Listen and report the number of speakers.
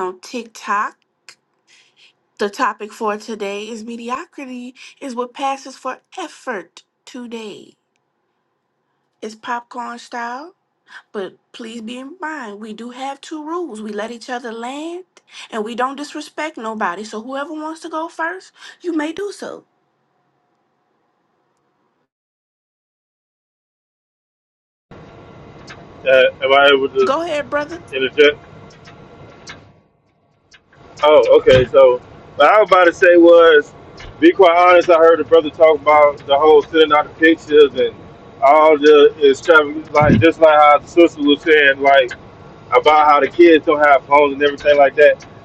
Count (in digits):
2